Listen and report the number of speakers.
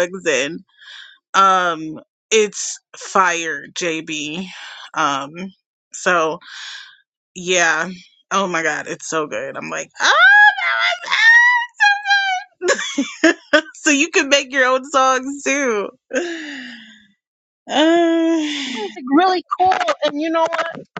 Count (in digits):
2